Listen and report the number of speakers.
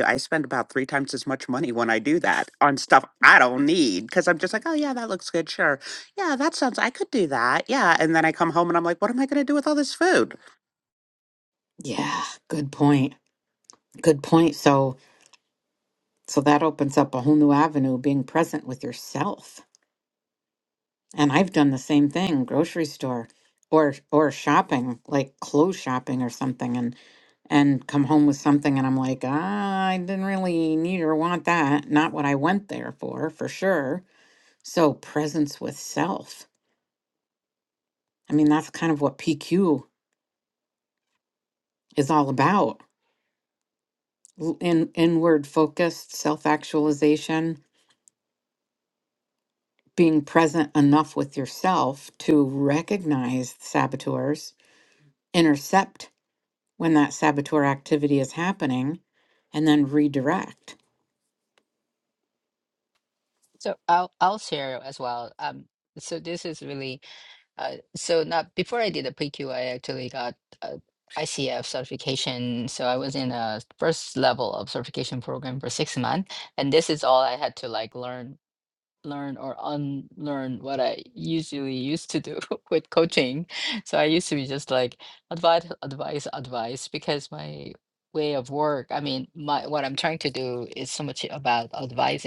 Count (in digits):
3